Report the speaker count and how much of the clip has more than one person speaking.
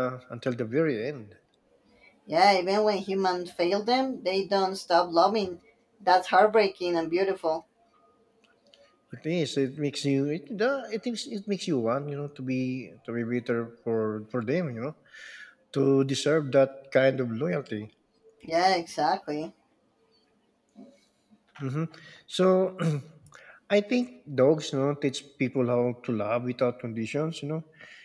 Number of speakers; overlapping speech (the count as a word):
two, no overlap